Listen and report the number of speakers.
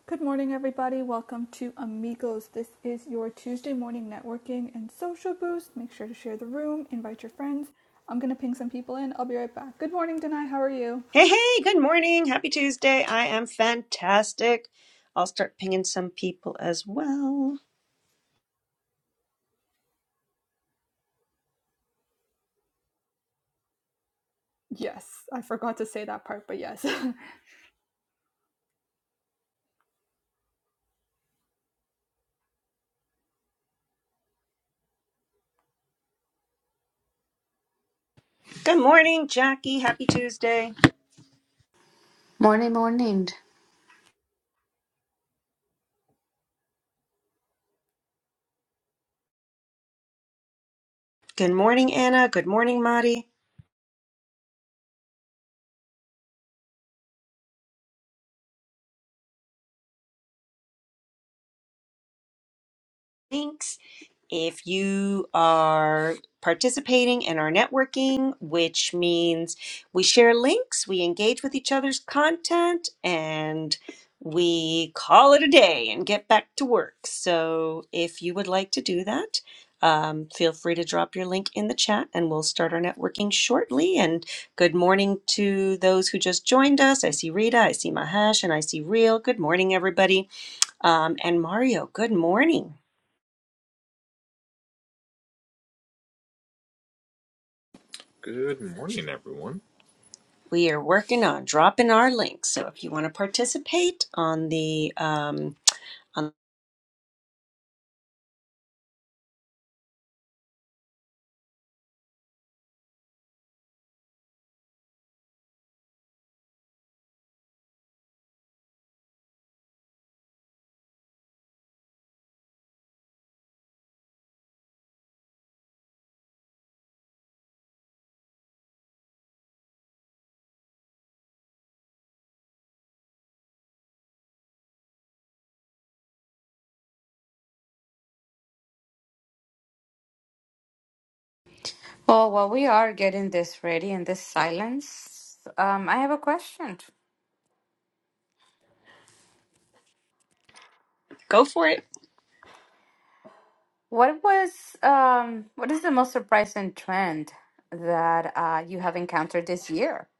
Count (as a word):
four